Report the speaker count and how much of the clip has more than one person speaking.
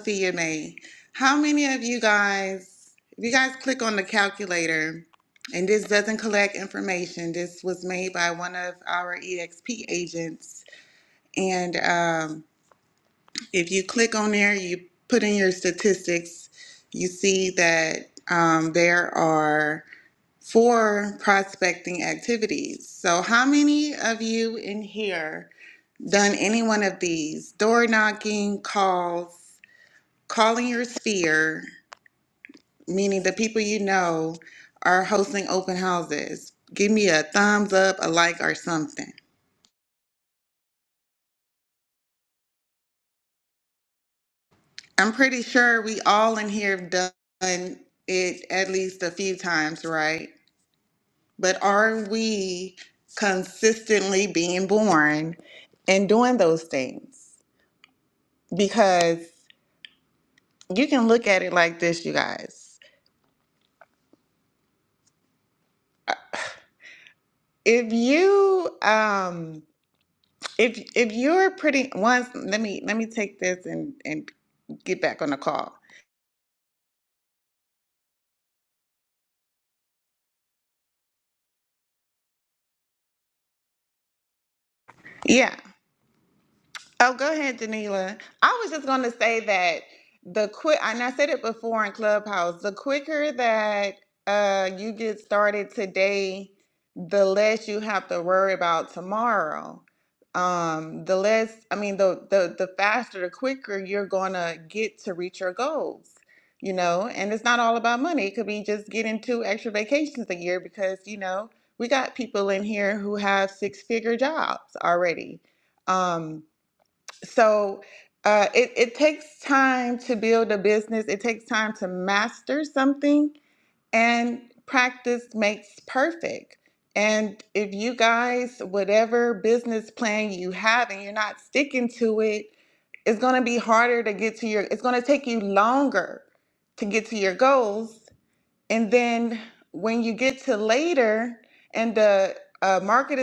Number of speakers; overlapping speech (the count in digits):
1, no overlap